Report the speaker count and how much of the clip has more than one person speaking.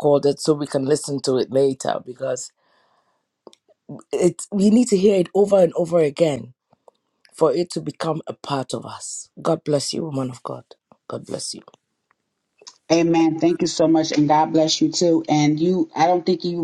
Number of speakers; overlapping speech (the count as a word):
two, no overlap